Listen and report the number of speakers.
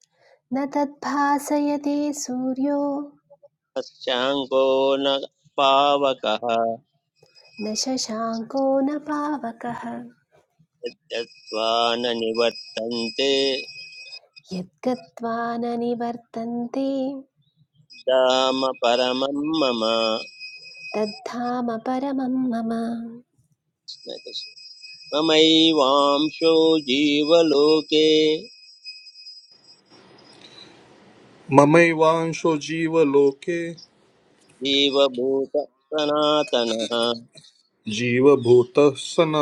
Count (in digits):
3